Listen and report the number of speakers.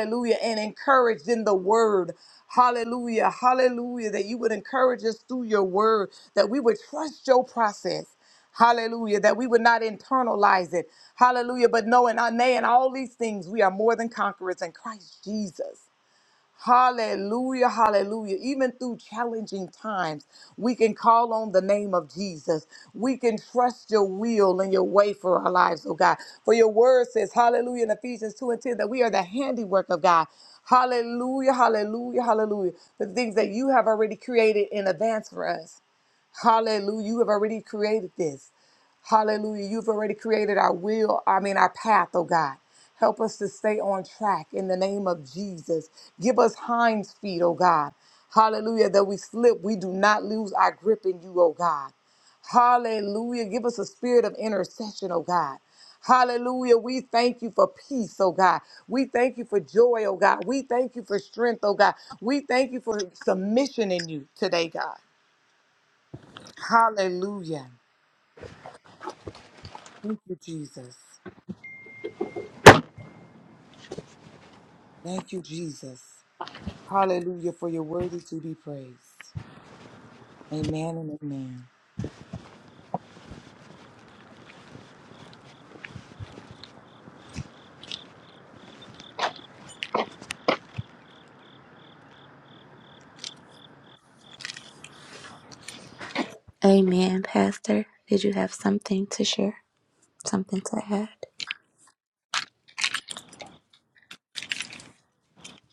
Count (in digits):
2